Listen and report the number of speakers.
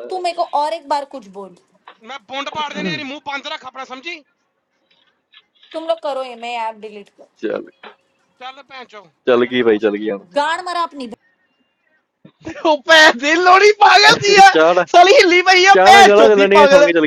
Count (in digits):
4